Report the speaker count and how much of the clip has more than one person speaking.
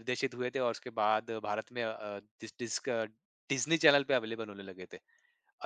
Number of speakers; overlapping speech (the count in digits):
1, no overlap